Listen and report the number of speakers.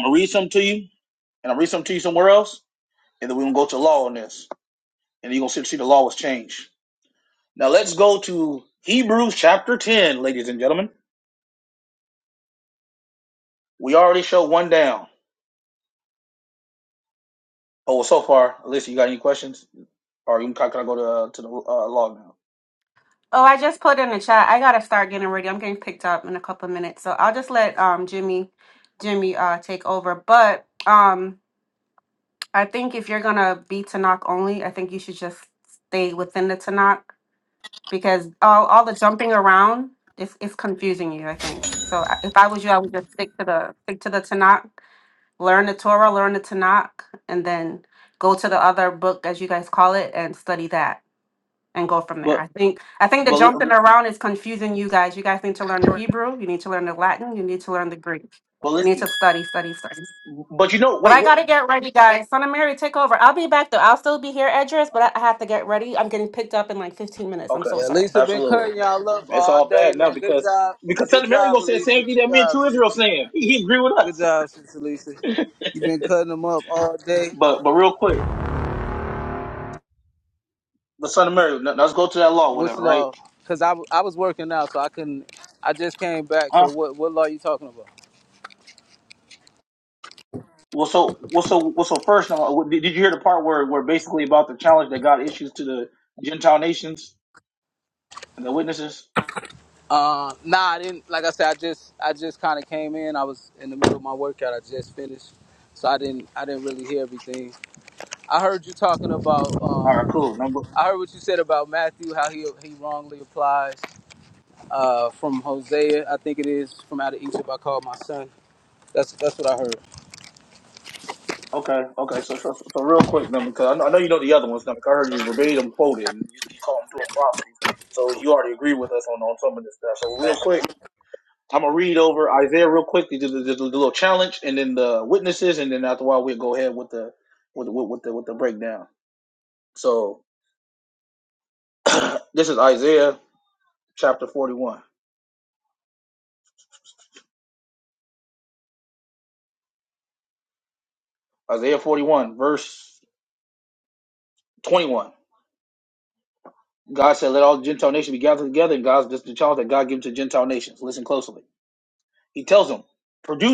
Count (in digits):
3